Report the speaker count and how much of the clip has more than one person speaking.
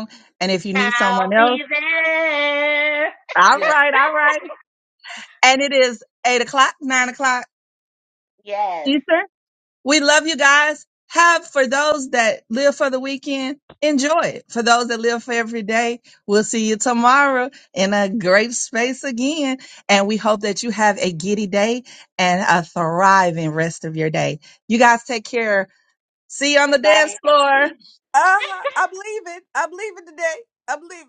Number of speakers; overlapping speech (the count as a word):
three, about 5%